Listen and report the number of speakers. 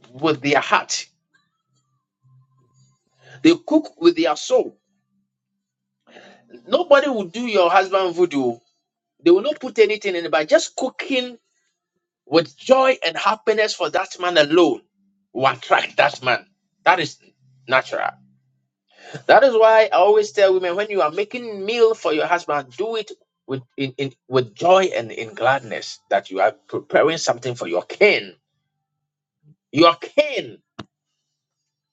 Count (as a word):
one